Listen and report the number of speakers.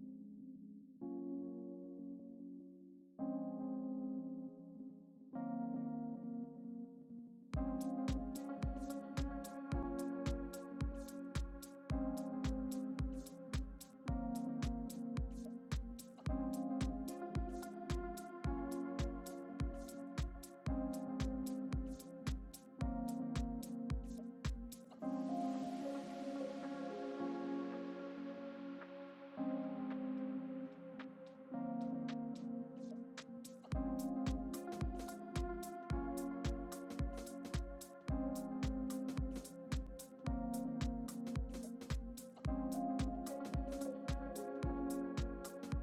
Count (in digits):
0